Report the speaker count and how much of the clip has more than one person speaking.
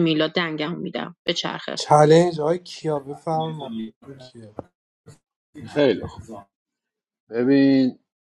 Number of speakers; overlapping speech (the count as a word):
three, under 1%